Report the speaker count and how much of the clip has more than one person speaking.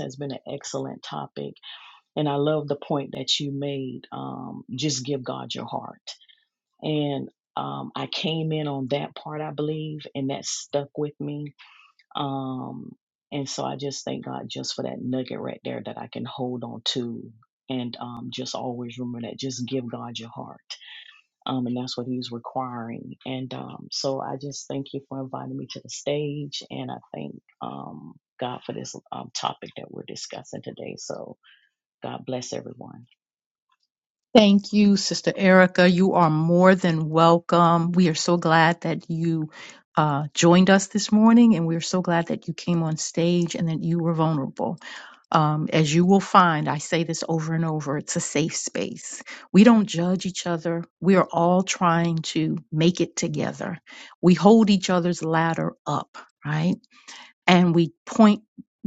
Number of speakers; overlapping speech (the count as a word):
two, no overlap